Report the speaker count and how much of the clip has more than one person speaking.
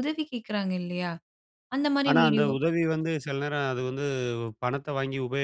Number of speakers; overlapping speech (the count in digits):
2, about 9%